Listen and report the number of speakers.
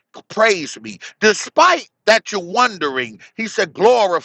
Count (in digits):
1